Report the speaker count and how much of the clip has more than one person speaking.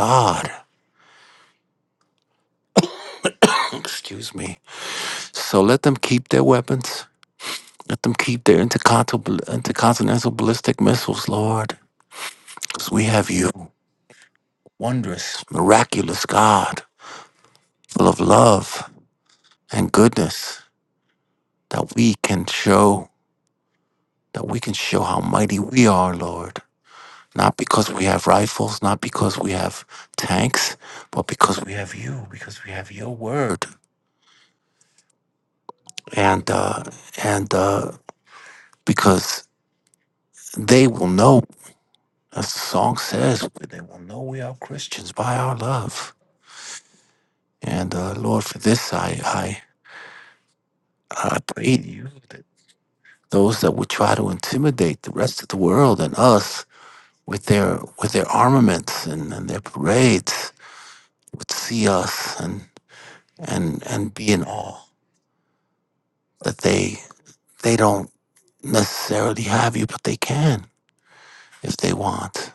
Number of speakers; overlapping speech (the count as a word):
one, no overlap